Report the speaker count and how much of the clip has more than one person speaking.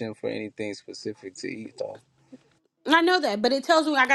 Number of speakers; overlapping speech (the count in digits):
2, no overlap